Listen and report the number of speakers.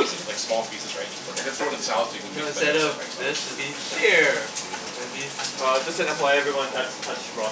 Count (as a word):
three